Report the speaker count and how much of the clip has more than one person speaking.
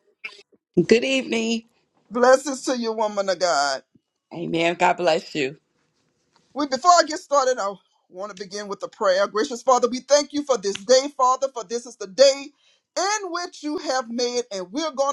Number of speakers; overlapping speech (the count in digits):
2, no overlap